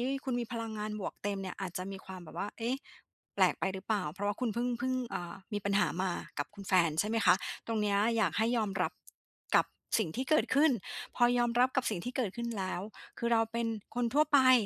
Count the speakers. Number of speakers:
1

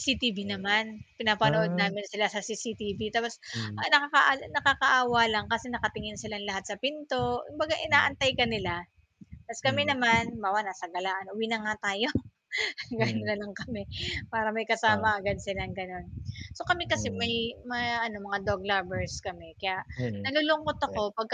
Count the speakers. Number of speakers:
2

